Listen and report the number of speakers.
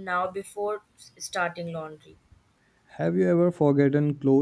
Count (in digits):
2